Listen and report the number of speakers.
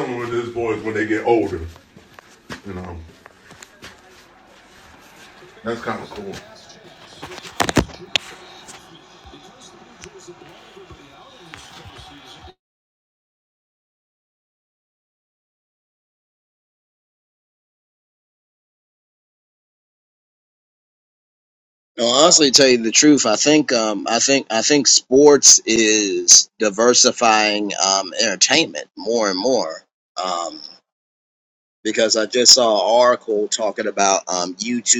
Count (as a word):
two